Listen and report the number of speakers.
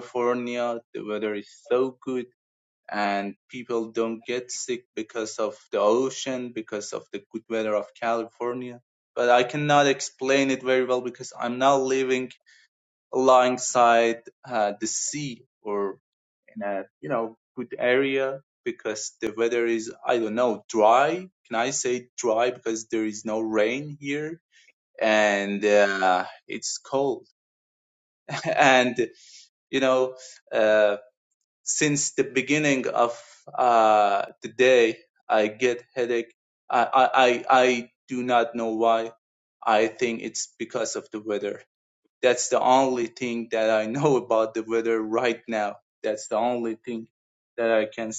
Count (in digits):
1